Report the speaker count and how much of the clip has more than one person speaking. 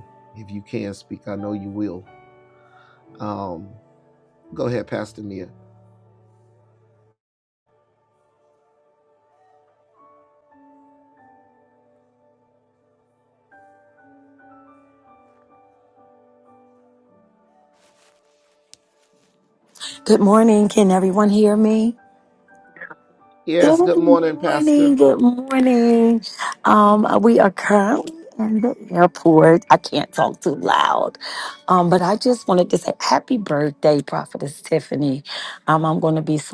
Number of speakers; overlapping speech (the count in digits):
2, about 4%